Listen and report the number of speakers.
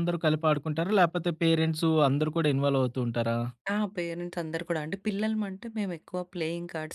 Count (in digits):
2